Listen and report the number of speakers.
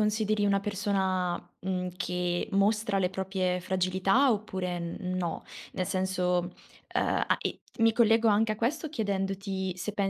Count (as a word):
one